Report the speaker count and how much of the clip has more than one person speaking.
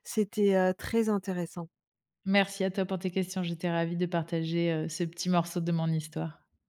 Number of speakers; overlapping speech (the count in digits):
2, no overlap